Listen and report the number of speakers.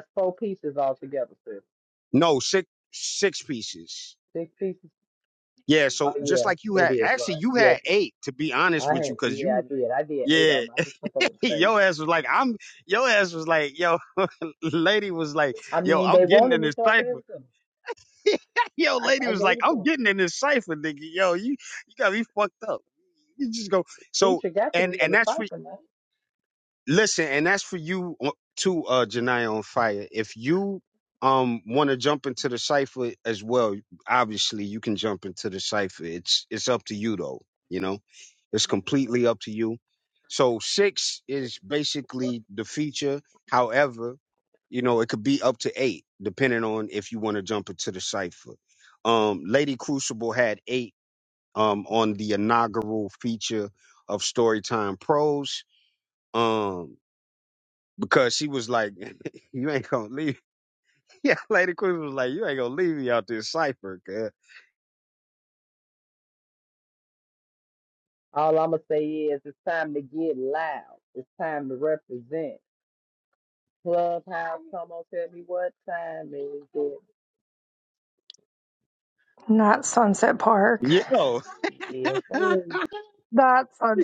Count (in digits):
3